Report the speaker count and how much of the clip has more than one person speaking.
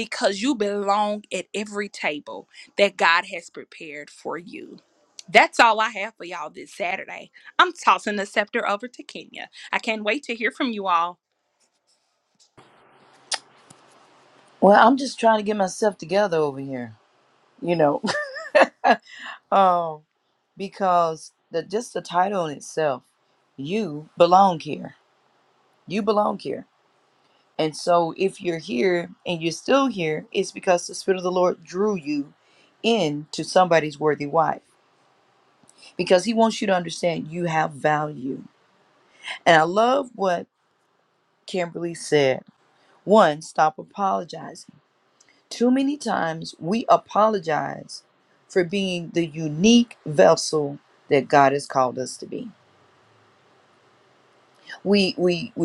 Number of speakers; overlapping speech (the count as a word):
two, no overlap